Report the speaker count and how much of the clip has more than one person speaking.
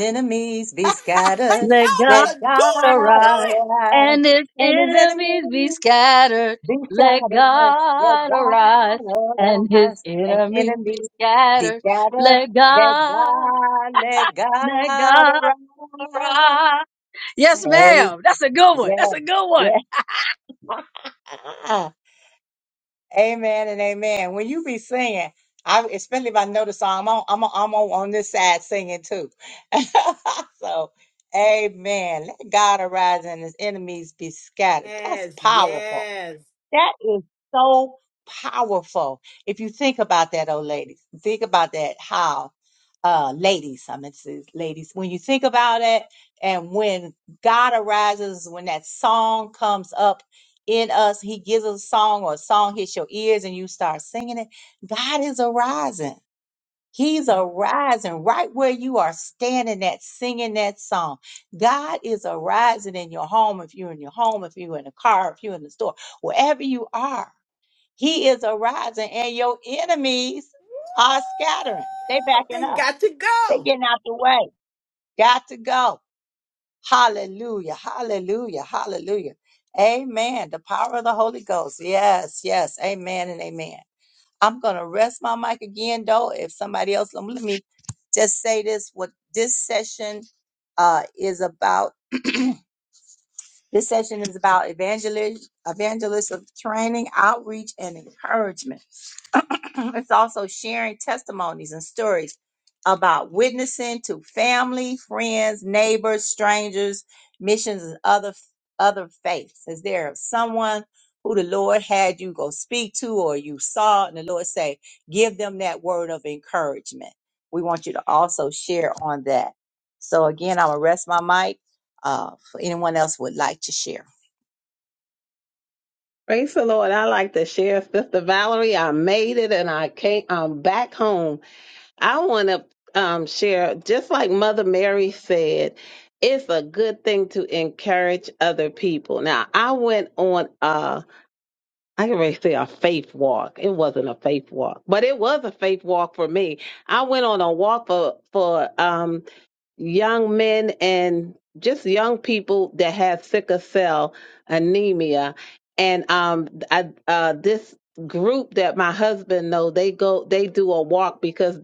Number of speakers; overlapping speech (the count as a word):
four, about 7%